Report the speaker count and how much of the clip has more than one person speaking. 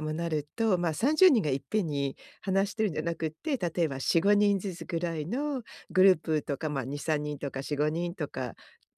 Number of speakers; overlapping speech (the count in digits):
1, no overlap